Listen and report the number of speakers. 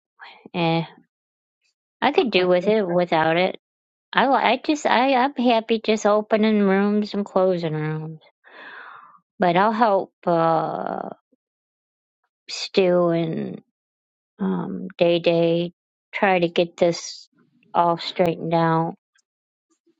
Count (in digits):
1